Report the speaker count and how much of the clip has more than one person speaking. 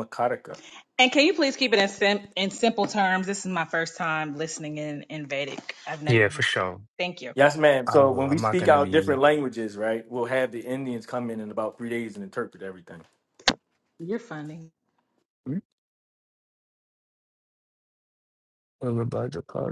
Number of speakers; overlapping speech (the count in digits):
3, about 7%